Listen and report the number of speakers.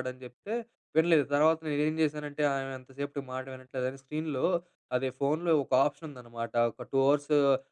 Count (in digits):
1